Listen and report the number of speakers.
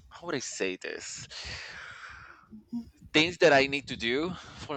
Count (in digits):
1